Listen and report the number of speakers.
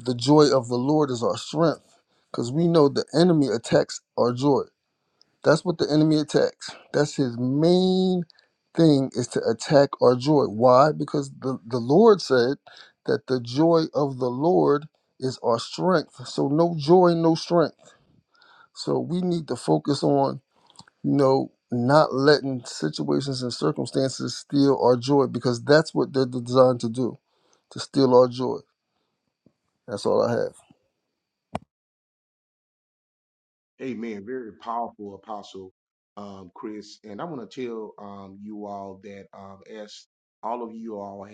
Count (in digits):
2